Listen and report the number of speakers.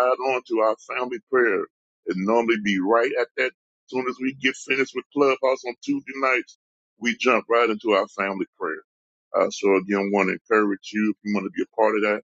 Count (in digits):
1